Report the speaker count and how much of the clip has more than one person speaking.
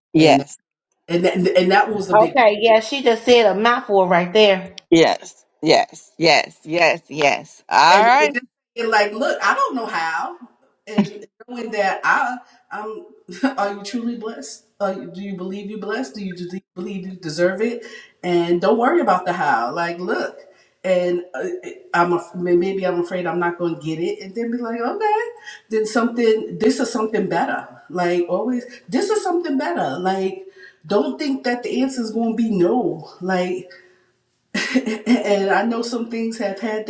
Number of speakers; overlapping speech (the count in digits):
3, about 2%